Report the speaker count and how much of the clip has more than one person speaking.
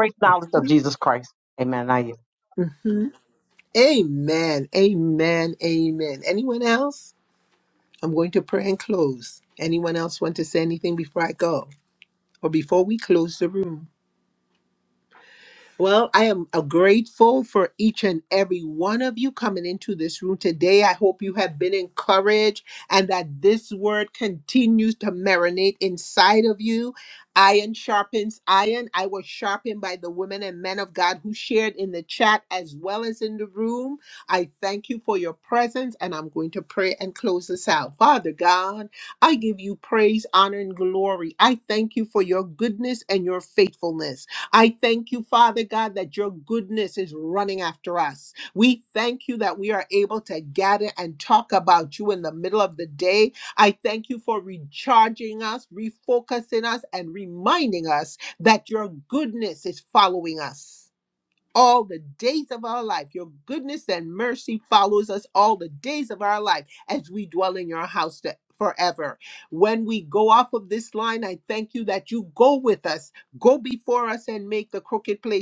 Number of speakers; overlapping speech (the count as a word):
two, no overlap